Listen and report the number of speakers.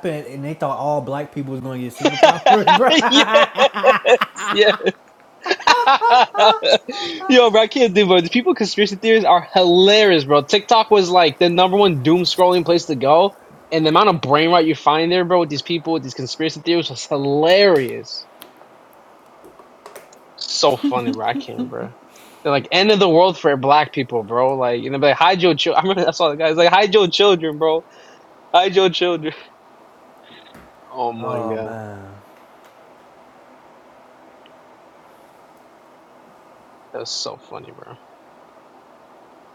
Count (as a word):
two